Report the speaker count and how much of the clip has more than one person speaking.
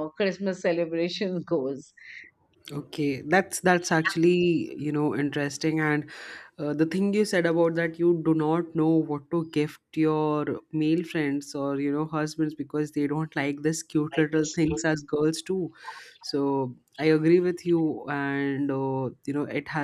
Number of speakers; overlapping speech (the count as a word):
two, no overlap